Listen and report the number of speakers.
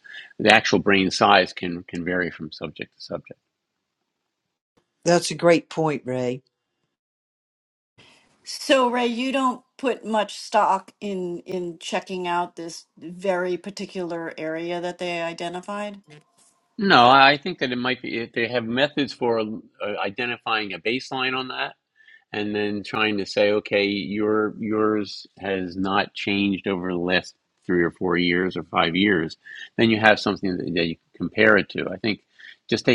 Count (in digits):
3